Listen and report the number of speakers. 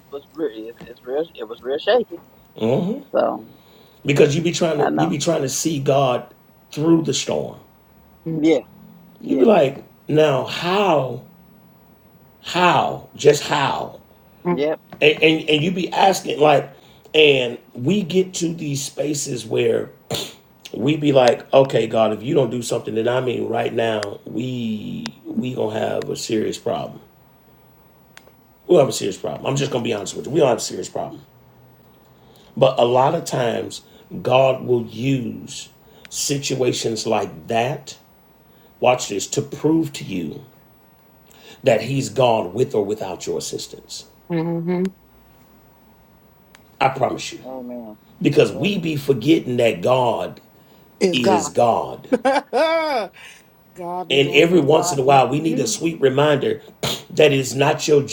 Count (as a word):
three